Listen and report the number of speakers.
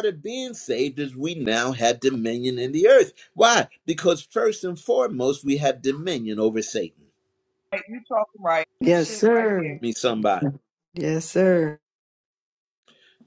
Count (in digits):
3